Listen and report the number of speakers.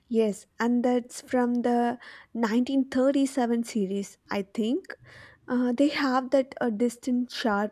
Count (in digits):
1